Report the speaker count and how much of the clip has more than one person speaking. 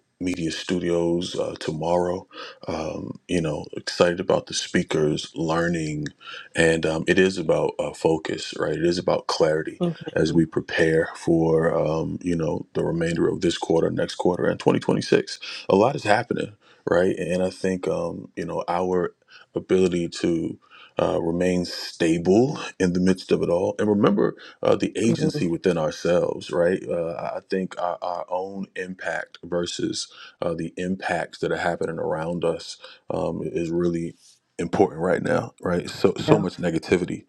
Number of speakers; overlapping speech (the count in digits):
1, no overlap